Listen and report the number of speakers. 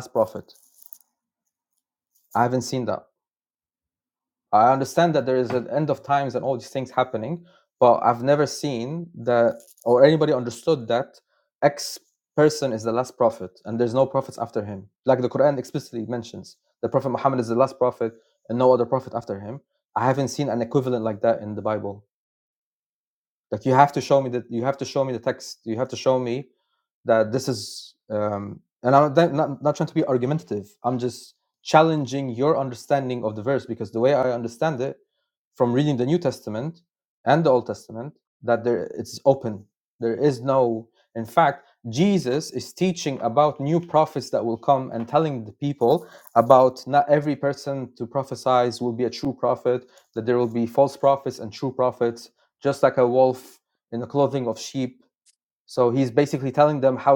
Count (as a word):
one